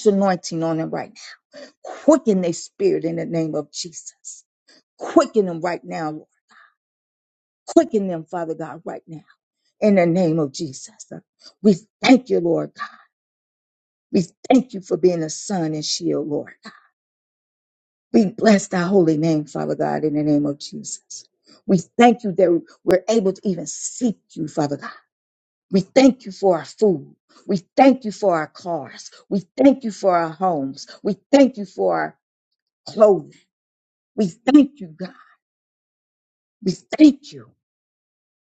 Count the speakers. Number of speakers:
one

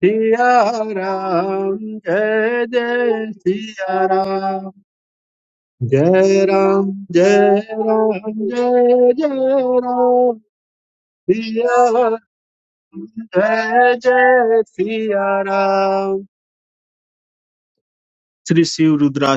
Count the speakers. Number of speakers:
one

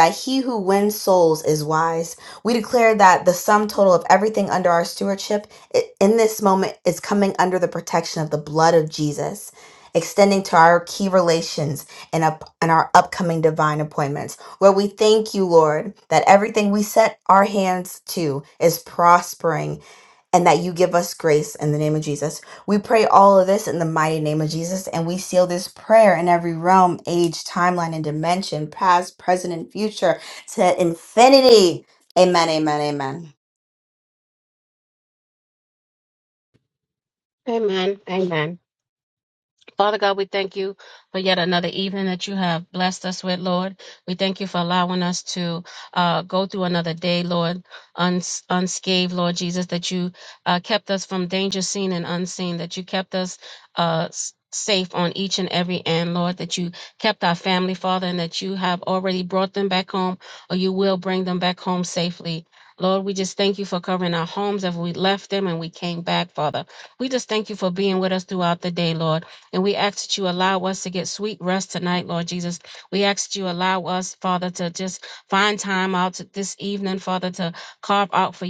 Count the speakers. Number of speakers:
two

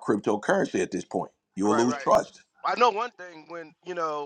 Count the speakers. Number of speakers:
two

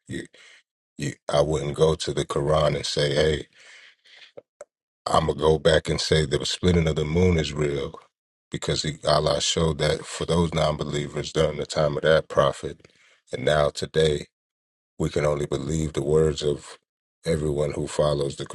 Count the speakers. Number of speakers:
one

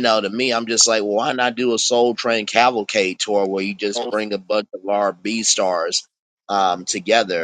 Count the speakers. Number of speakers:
one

